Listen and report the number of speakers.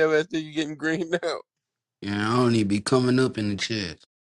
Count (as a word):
two